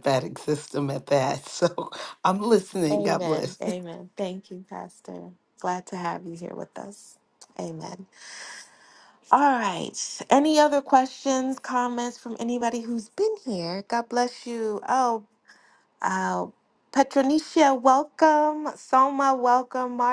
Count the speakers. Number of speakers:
2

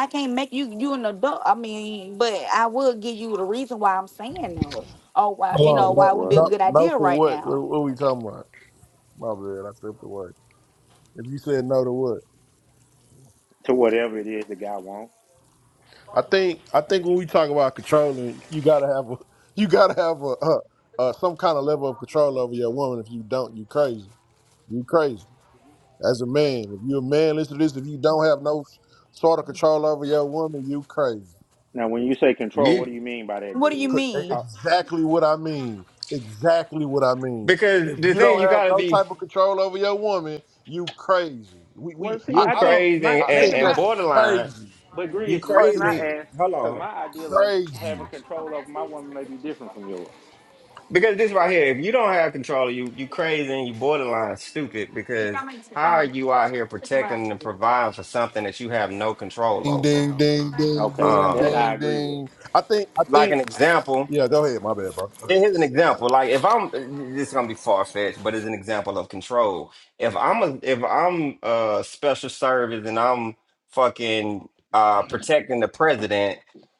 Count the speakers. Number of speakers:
4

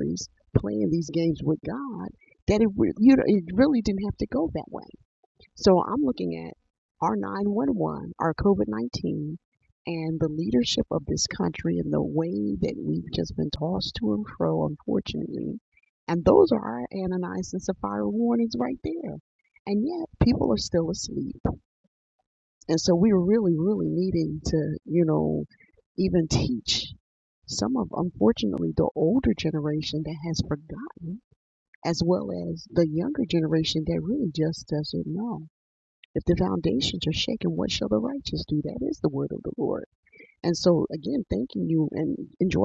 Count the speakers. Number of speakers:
1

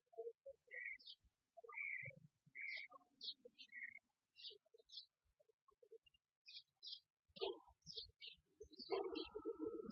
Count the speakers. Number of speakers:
0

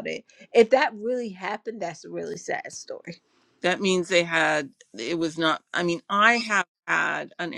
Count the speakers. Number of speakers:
2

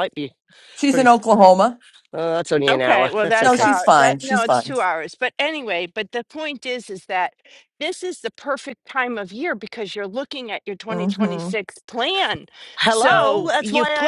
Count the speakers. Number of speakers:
3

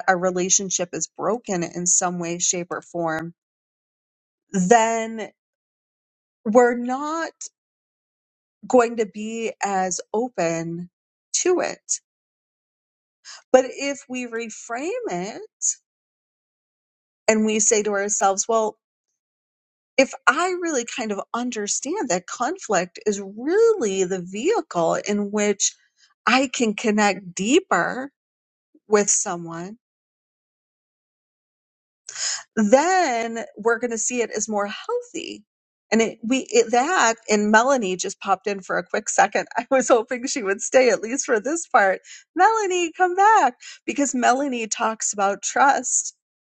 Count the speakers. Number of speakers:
1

